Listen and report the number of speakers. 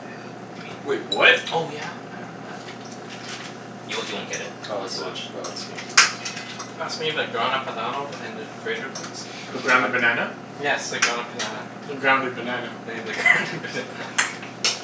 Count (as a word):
four